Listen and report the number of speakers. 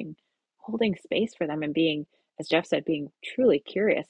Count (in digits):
1